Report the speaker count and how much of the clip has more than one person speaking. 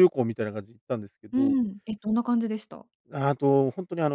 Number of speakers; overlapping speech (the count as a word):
two, about 6%